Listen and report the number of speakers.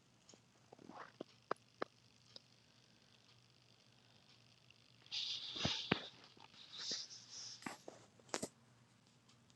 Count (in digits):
0